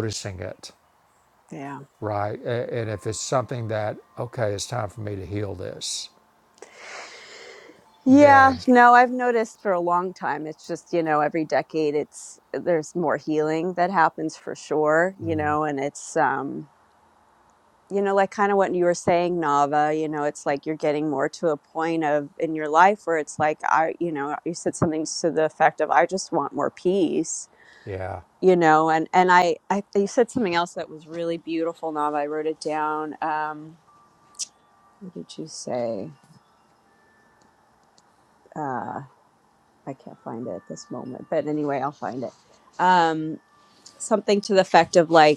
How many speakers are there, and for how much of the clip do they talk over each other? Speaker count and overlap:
two, about 1%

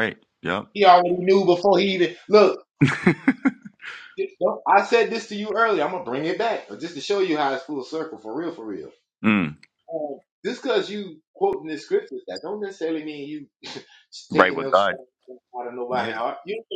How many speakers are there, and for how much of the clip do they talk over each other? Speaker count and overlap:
two, about 5%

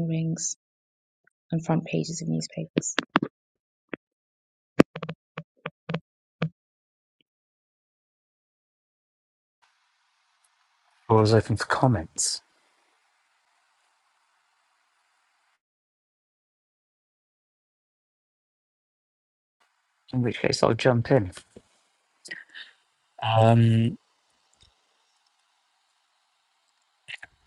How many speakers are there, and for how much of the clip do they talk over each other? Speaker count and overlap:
two, no overlap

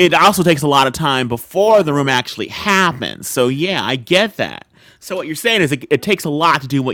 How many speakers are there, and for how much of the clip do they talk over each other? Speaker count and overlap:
one, no overlap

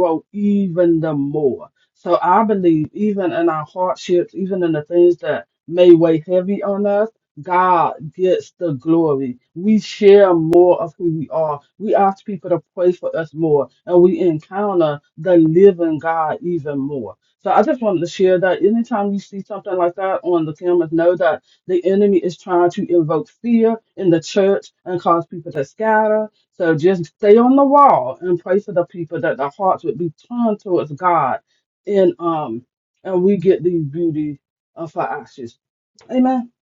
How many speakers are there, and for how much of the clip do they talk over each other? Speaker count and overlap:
one, no overlap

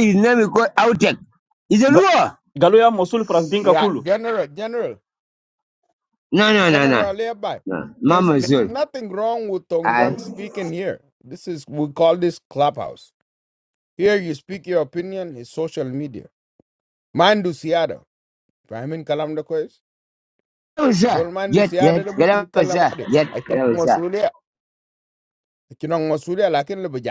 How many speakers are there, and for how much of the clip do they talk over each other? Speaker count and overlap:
three, about 18%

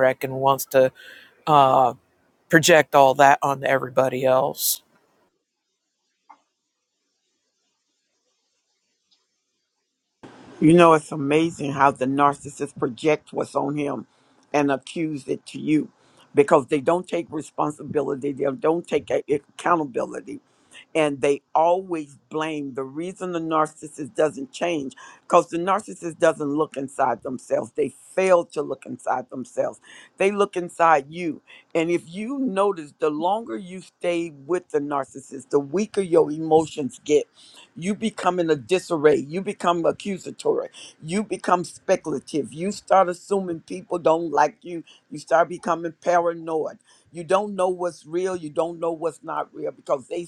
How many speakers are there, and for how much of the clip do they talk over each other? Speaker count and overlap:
two, no overlap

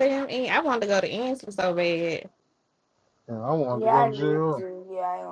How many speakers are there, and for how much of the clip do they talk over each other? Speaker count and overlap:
three, about 17%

